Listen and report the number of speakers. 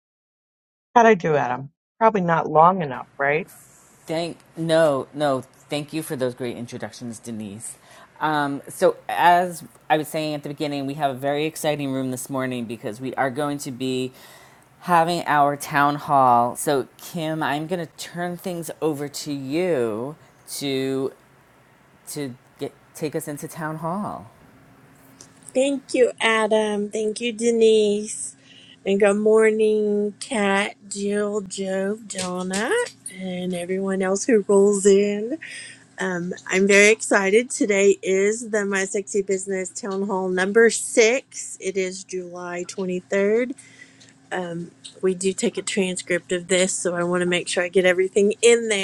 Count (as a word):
three